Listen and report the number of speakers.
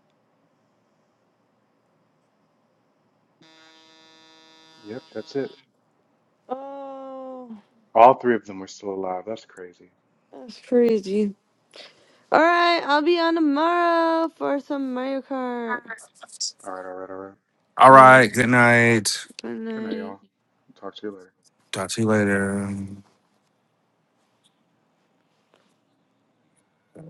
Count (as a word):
three